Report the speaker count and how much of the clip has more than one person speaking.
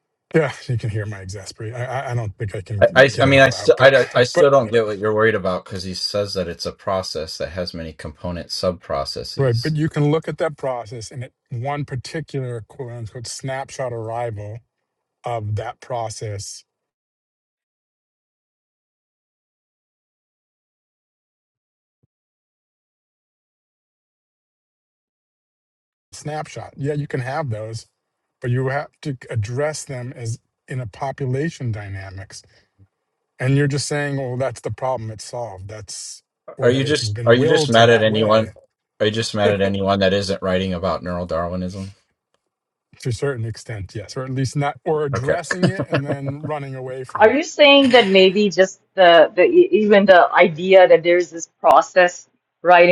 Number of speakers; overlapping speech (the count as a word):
three, about 7%